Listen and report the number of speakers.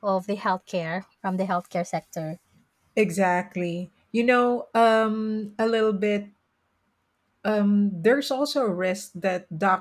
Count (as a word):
two